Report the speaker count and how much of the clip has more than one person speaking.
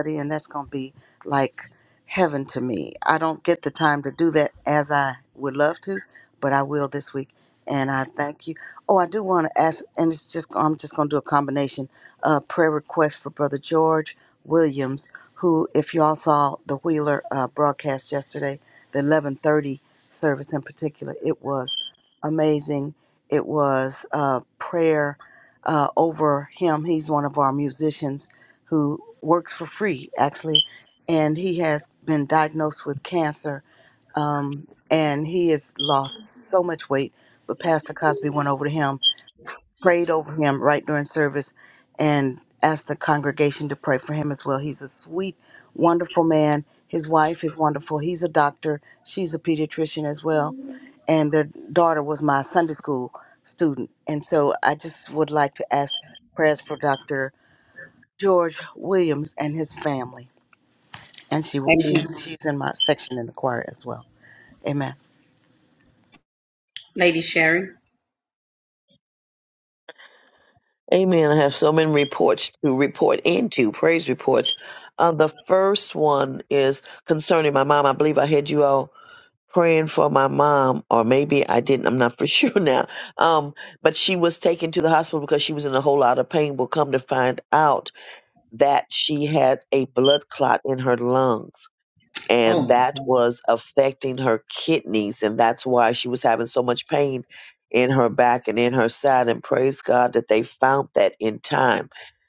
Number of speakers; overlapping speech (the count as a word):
three, about 1%